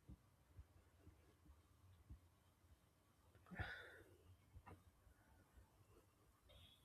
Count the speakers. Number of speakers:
zero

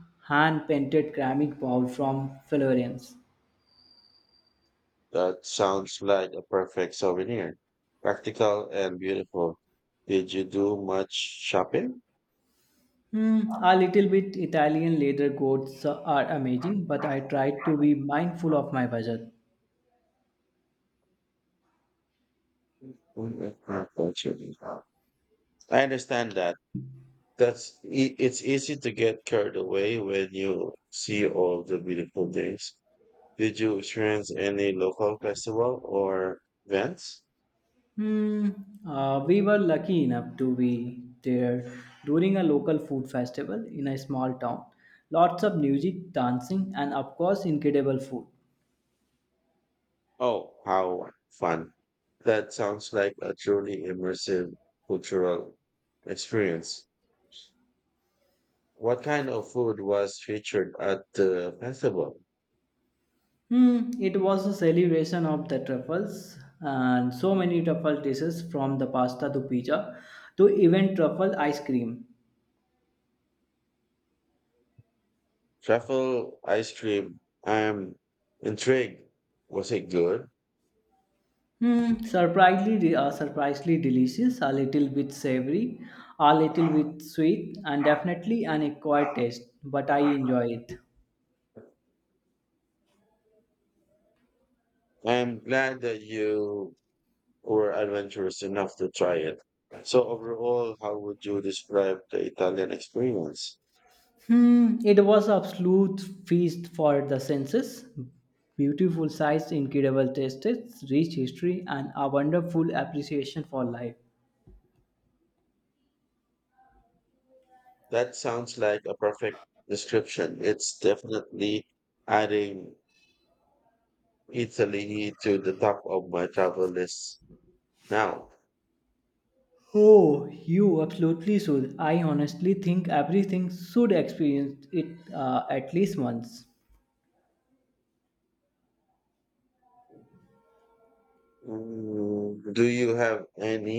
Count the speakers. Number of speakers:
two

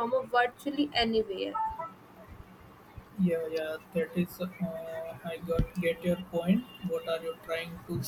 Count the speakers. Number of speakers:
two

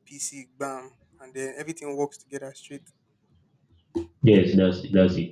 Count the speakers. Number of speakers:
two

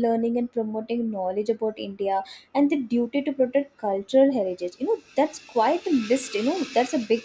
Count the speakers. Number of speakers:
one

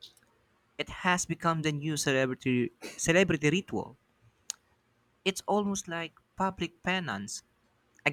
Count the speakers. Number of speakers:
one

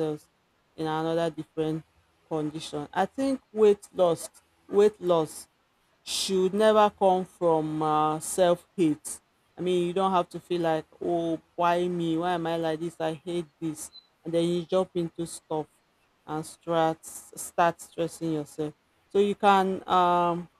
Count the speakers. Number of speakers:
one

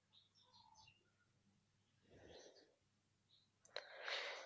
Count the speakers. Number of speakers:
zero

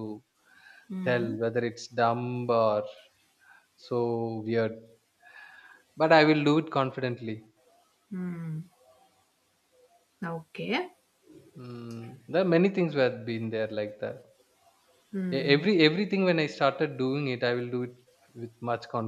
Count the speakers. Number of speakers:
two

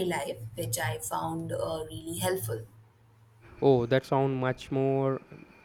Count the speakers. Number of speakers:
two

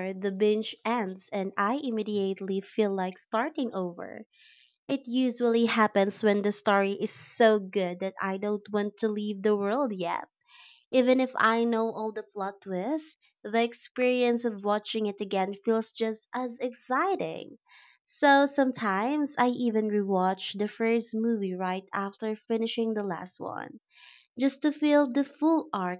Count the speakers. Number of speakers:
one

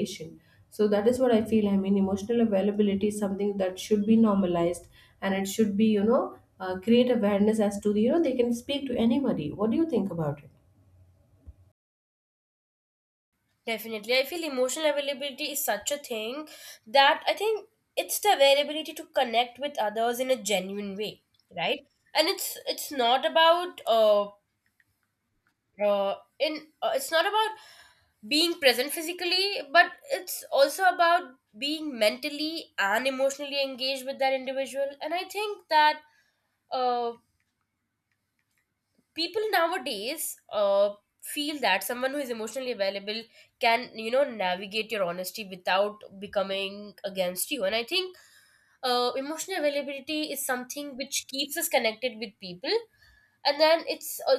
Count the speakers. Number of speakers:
two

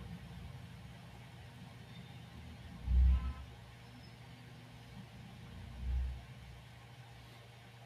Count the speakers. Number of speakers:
zero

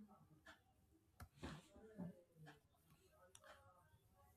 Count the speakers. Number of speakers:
zero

